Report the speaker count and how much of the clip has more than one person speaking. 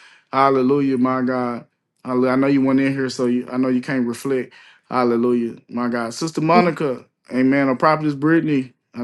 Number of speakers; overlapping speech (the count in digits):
1, no overlap